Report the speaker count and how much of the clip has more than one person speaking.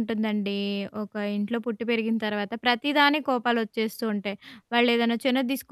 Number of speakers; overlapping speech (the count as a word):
one, no overlap